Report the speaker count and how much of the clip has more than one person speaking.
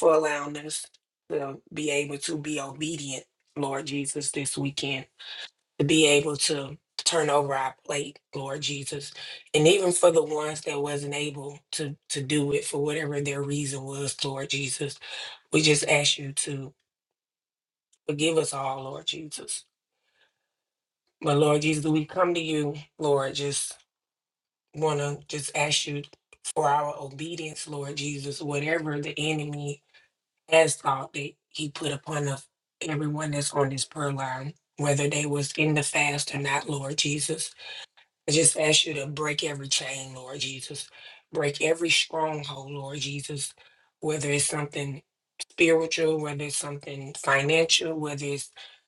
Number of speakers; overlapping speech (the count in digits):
1, no overlap